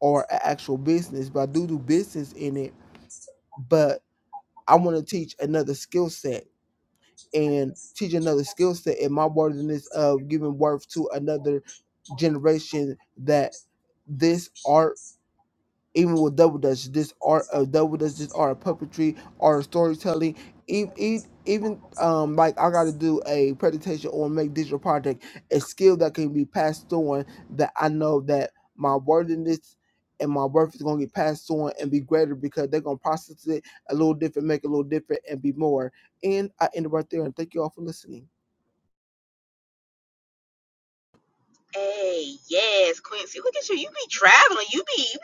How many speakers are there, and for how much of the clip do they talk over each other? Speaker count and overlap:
2, no overlap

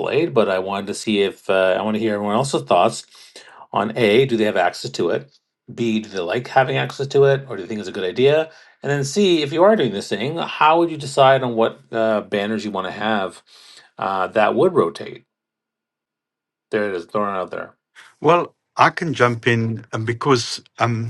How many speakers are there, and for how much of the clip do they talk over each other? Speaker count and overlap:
2, no overlap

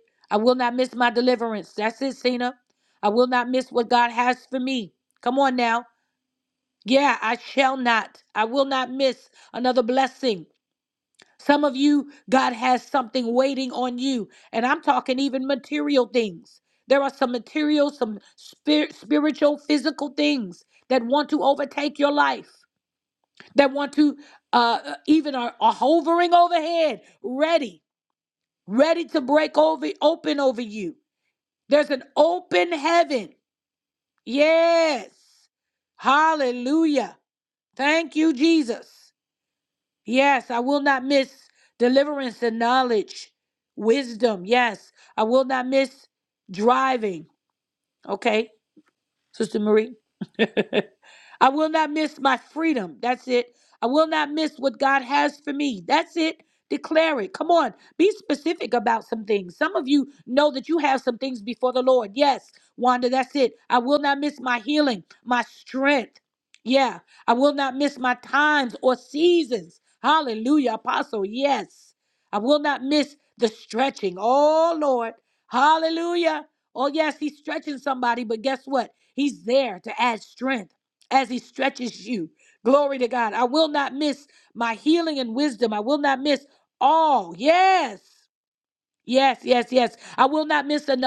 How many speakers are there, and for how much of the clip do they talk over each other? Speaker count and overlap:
1, no overlap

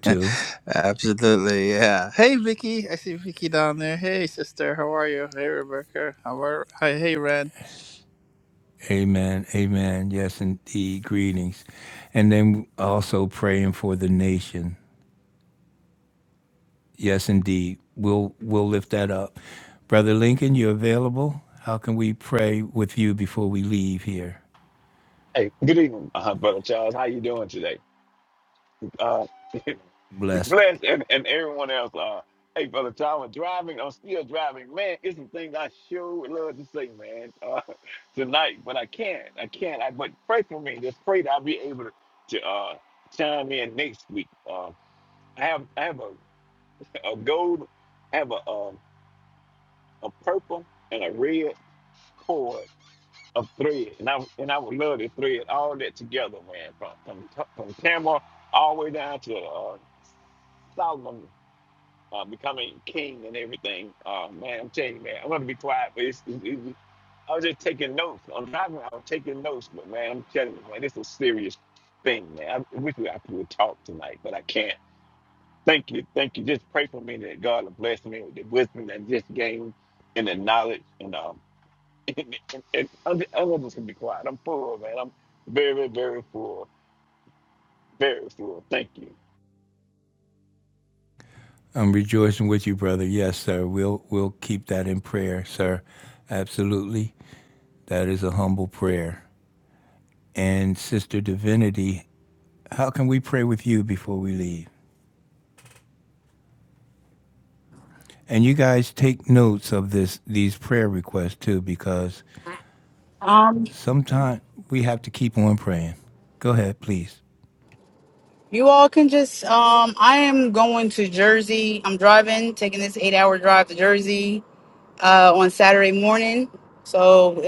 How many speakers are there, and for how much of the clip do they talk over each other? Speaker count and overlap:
4, under 1%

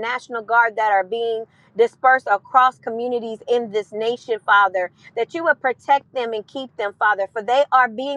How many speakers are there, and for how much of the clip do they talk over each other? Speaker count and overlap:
1, no overlap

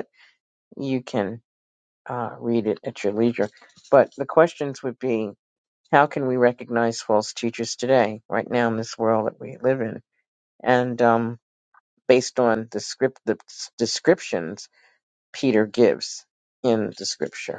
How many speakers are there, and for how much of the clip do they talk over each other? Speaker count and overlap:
1, no overlap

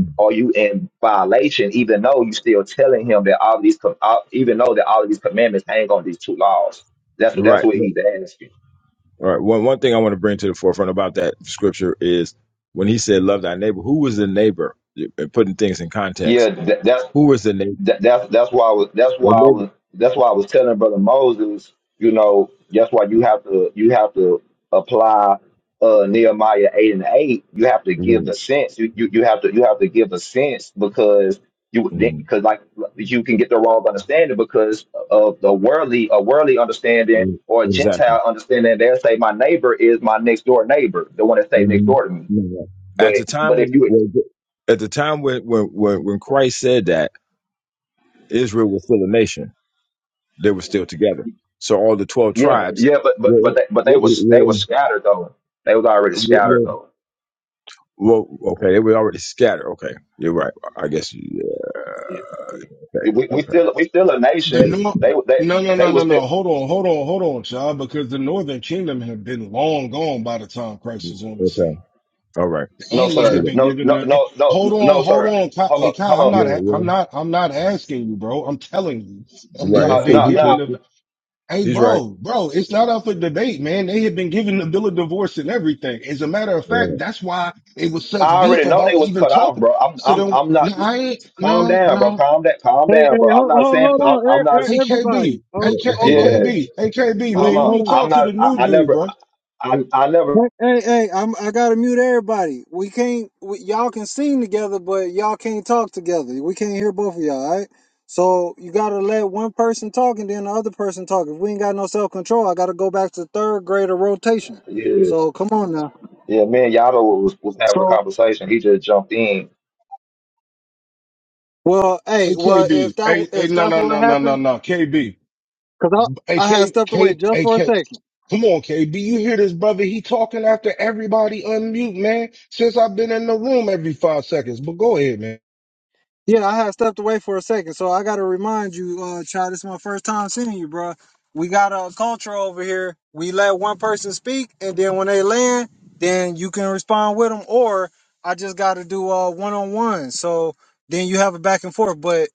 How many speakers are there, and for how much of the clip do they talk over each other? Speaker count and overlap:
4, about 16%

